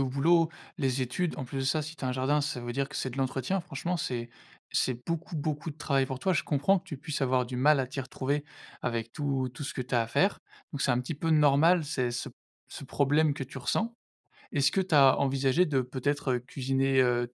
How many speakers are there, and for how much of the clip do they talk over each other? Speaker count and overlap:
1, no overlap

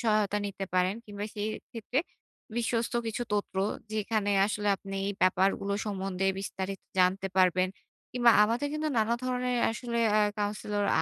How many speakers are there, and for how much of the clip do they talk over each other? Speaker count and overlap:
1, no overlap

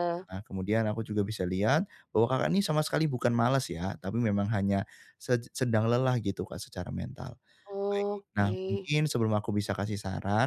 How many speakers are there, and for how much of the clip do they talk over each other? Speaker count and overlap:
2, about 4%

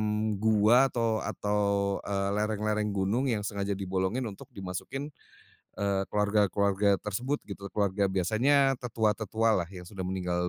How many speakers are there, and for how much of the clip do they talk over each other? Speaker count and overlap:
1, no overlap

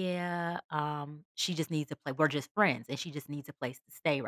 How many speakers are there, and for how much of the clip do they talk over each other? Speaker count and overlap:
1, no overlap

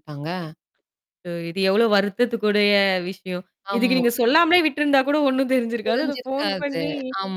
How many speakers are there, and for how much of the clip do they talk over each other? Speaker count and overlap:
2, about 18%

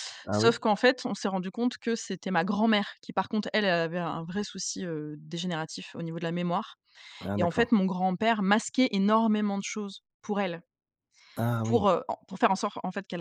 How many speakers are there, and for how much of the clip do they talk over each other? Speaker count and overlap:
2, about 6%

